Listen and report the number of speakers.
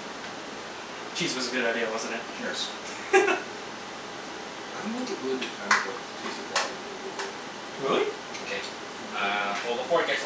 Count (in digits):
3